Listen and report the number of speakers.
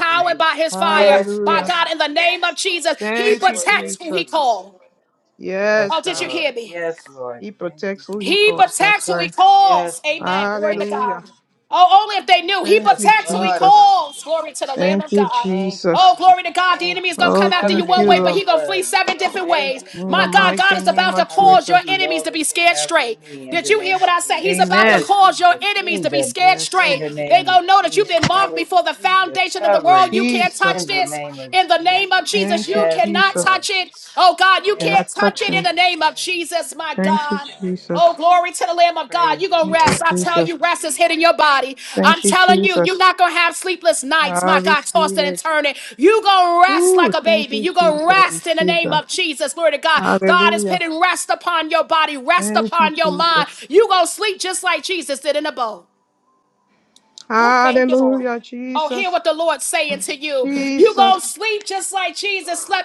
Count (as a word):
three